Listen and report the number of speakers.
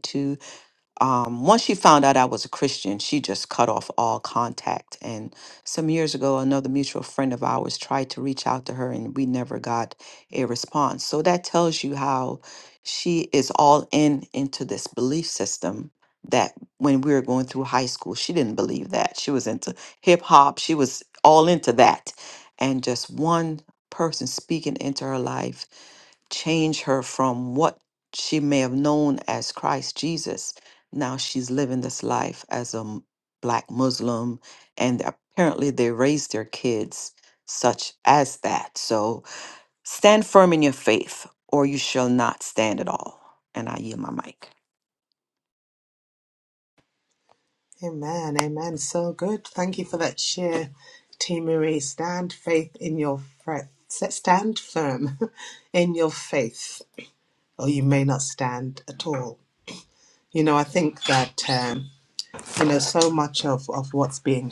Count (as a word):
two